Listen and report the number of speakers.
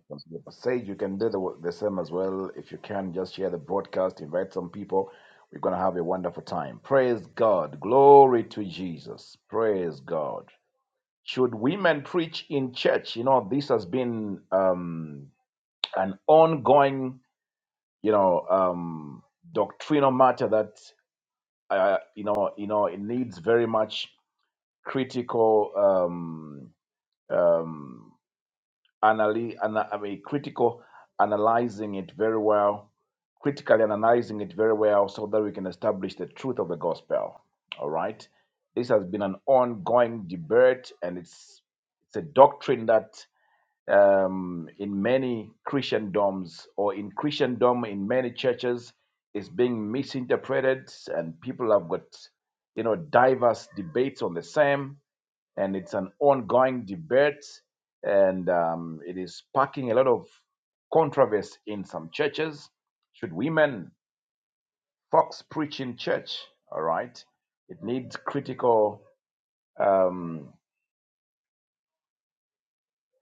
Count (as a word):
one